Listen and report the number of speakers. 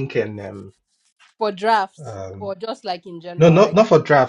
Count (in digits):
2